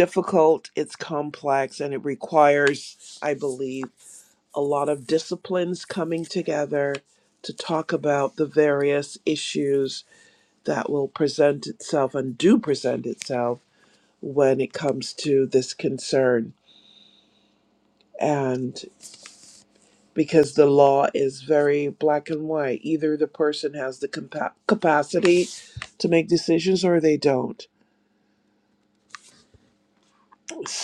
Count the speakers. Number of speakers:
one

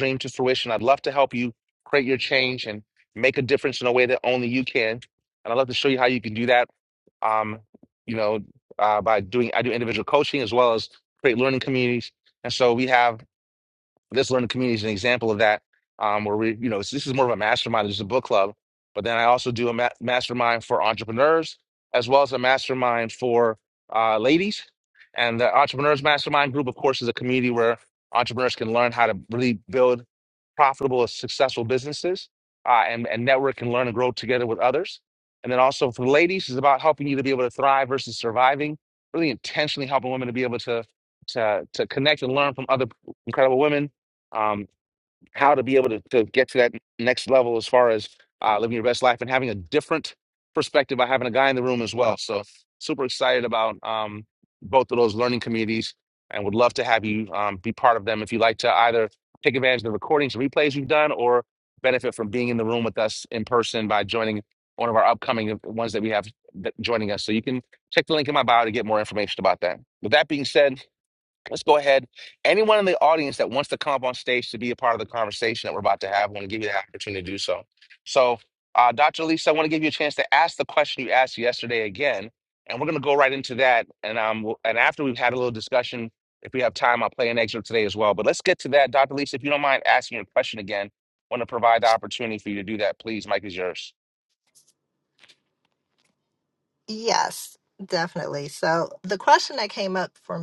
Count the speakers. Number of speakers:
two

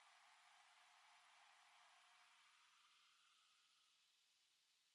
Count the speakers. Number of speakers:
zero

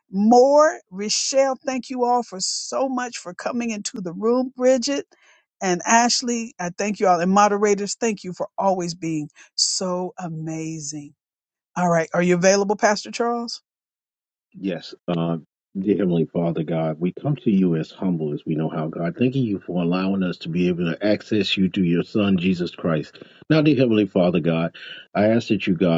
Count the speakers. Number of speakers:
two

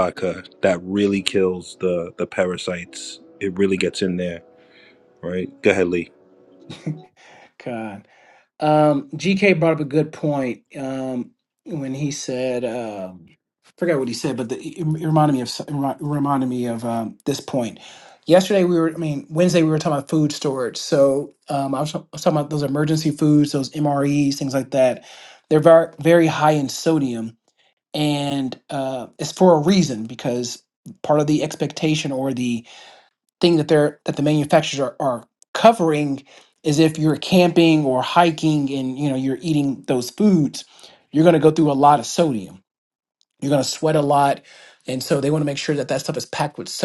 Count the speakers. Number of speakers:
two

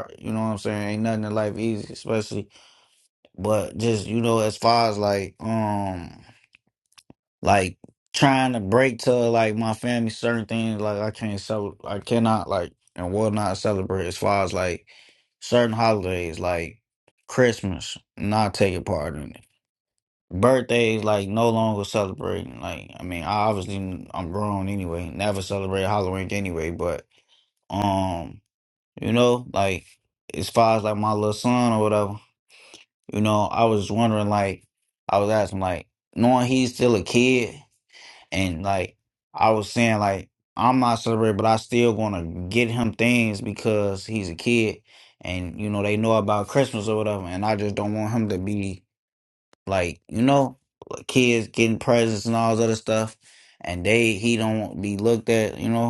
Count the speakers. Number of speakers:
one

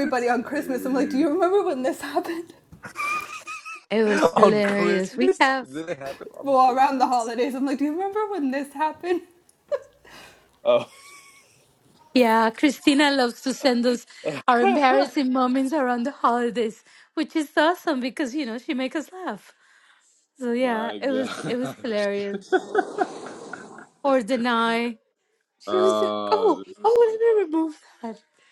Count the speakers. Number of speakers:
three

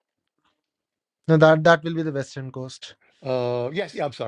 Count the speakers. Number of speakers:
two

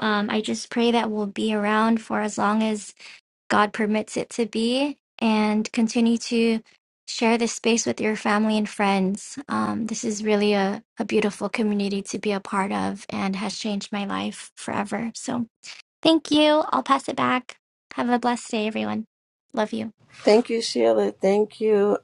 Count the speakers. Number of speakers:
two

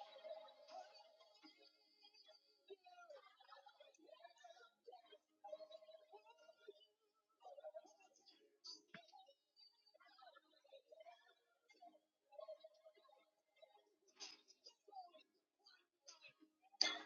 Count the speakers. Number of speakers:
zero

